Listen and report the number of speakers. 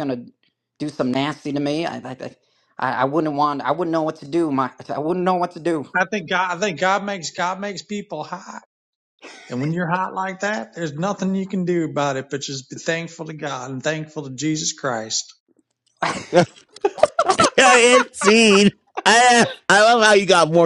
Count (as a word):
three